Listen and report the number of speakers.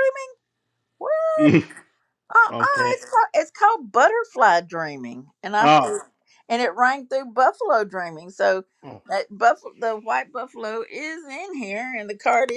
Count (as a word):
two